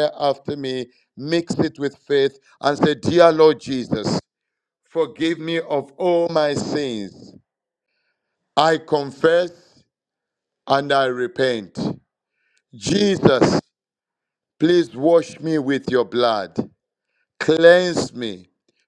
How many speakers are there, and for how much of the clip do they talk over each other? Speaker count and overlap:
1, no overlap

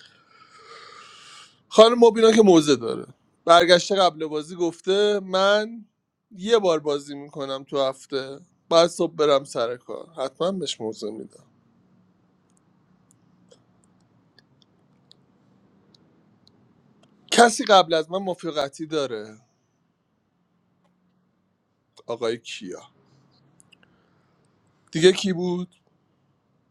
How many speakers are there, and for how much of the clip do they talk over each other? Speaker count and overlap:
1, no overlap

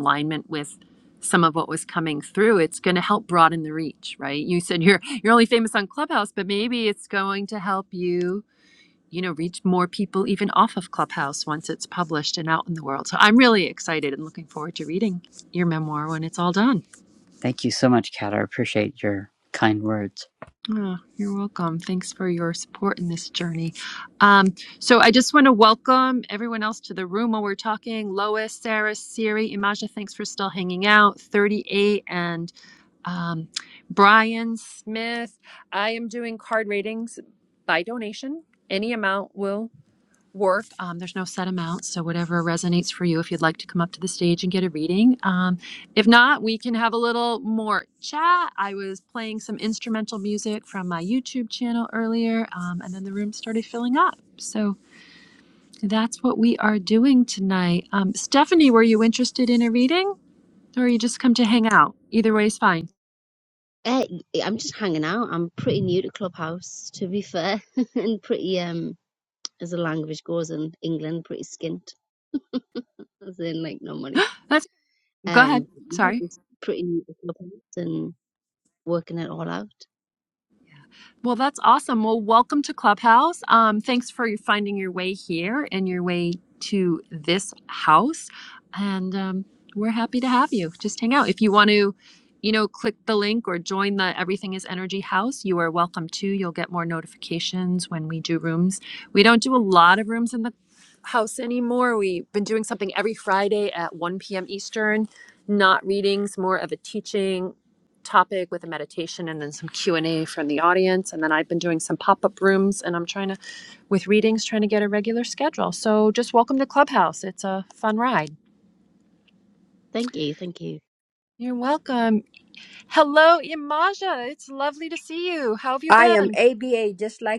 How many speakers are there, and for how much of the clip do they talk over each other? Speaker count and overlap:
4, about 1%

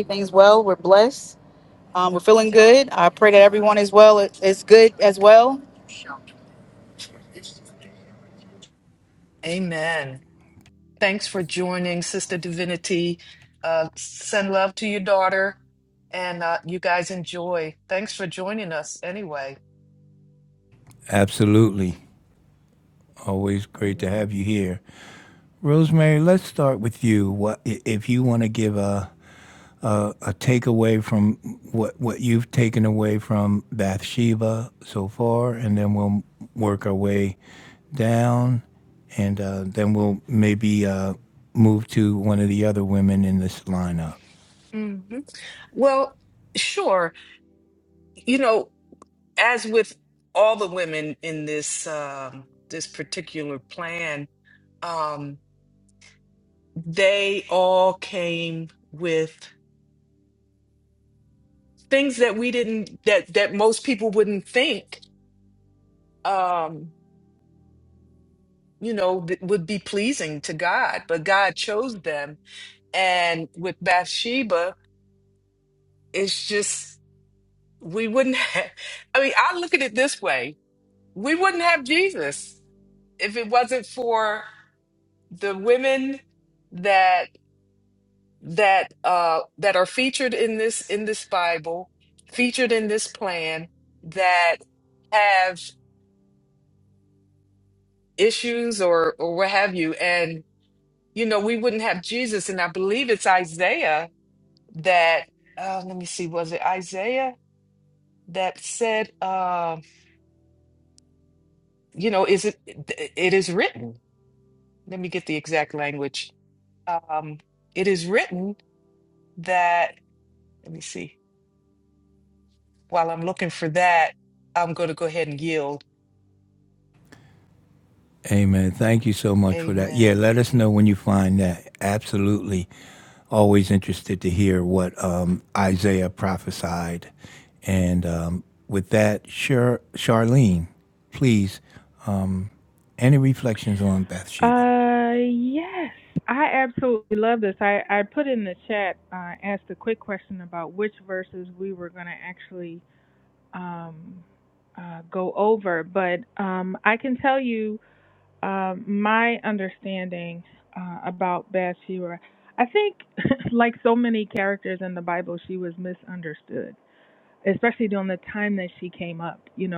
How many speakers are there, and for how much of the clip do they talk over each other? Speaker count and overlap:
4, about 1%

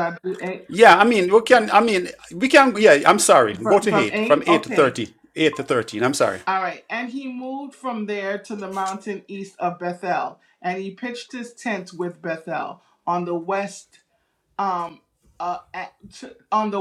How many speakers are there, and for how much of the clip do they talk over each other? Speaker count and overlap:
2, about 9%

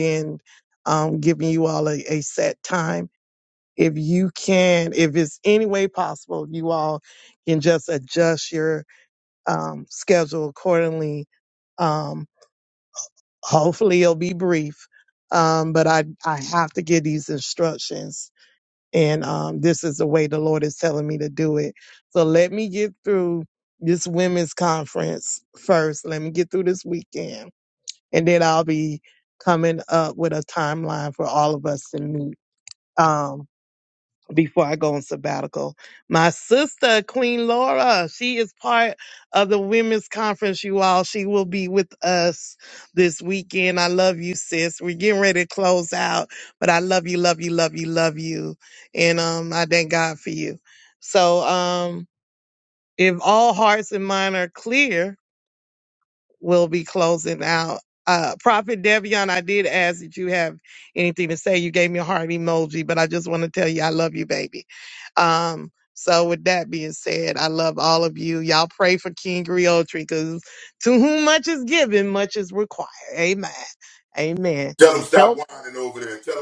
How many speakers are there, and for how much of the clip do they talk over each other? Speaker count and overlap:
2, under 1%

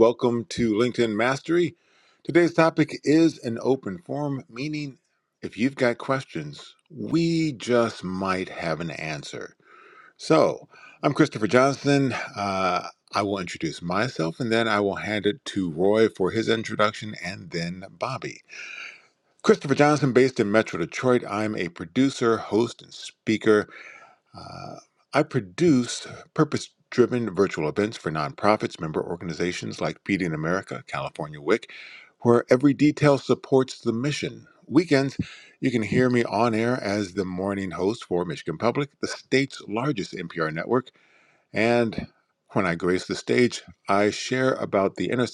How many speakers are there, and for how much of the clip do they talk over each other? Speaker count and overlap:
1, no overlap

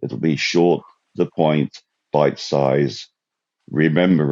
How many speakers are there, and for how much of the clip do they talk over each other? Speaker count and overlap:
1, no overlap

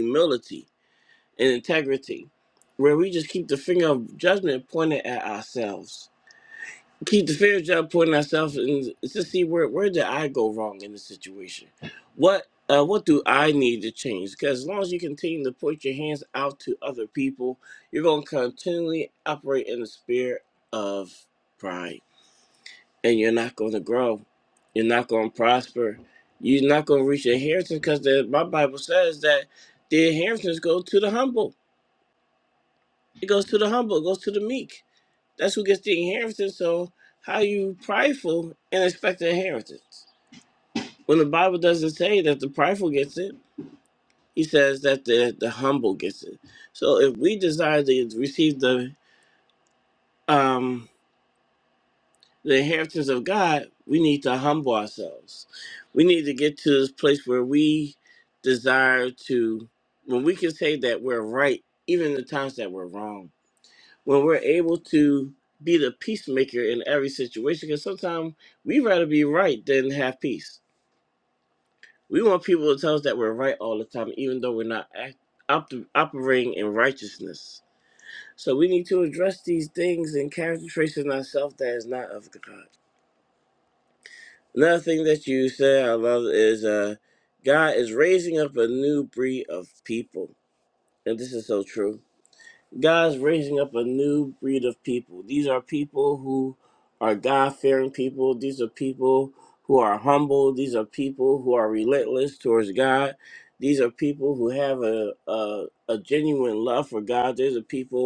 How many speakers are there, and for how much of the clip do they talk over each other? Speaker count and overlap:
1, no overlap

